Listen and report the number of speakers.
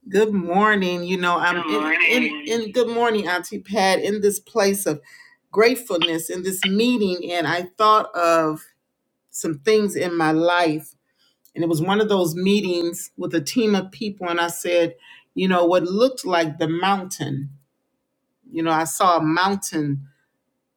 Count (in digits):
1